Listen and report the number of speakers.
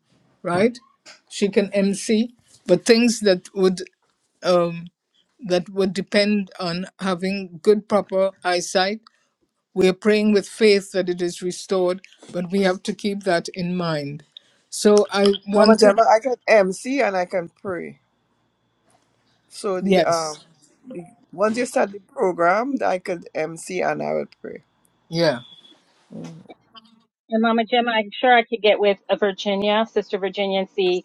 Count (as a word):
three